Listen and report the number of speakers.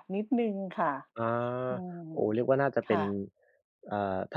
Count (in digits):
2